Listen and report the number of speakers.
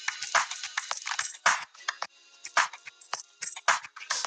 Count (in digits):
0